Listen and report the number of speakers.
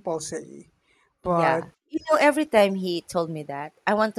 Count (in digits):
2